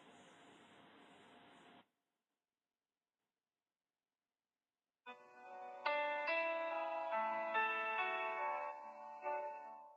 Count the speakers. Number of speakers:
0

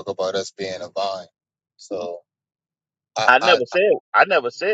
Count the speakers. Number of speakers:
2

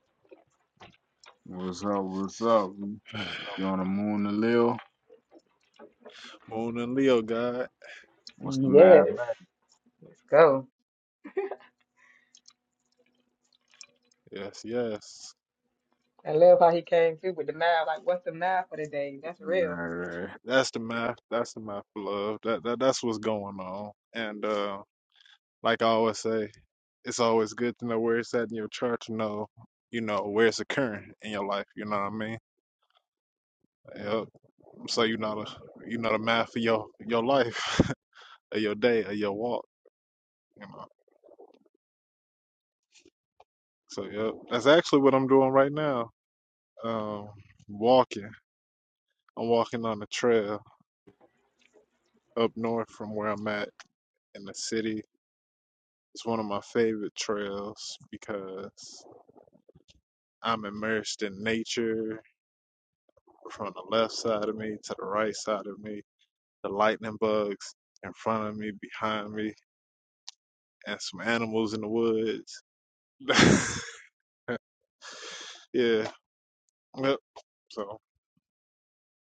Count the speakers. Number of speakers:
3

